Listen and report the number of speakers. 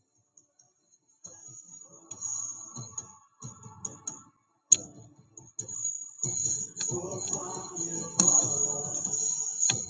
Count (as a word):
zero